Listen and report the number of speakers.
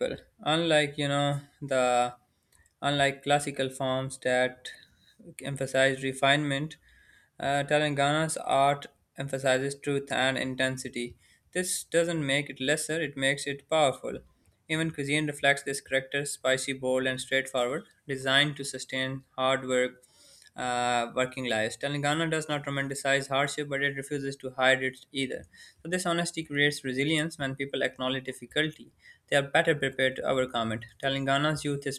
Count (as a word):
one